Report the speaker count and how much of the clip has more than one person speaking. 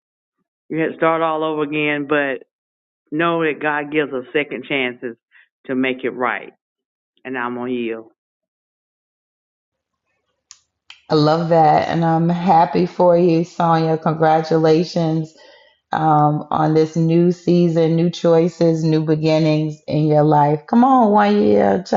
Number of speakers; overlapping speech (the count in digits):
2, no overlap